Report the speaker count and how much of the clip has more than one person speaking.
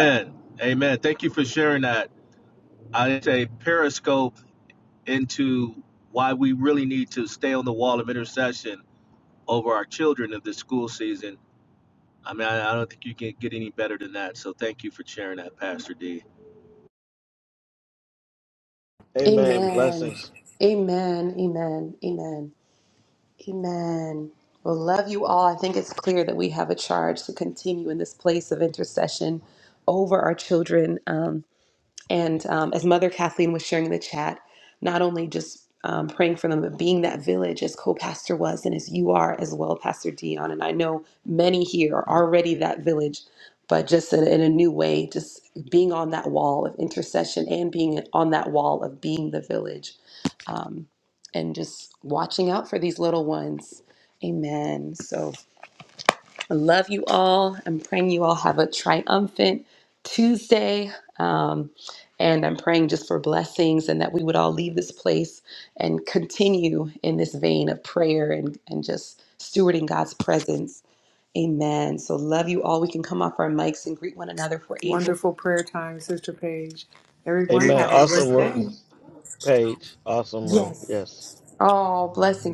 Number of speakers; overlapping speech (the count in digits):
4, about 3%